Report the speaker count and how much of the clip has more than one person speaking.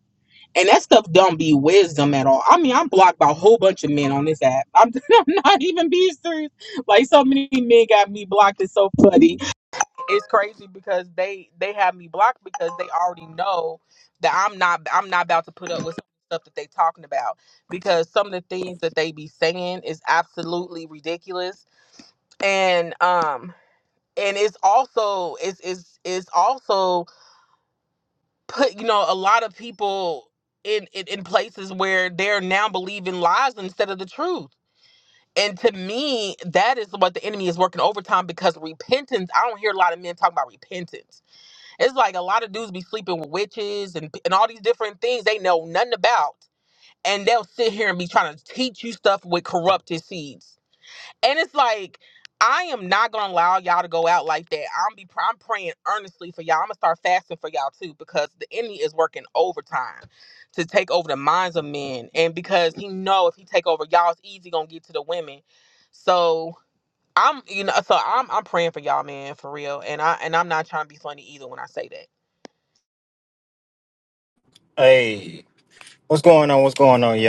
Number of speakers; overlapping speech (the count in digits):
2, no overlap